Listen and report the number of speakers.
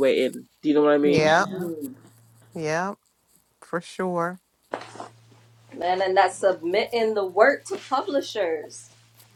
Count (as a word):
three